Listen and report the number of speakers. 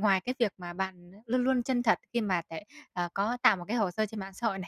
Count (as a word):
one